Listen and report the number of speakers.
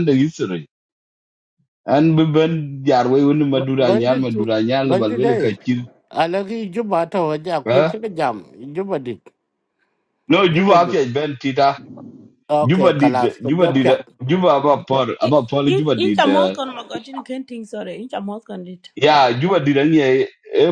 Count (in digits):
3